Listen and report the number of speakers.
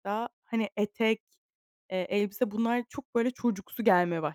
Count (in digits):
1